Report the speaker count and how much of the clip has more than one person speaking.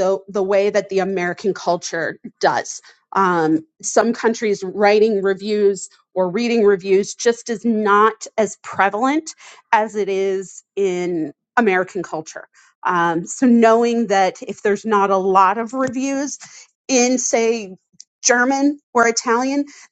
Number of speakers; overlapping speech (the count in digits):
1, no overlap